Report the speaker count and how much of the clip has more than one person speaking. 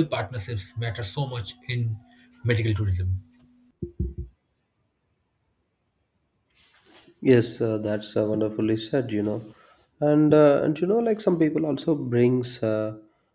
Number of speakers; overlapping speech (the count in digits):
2, no overlap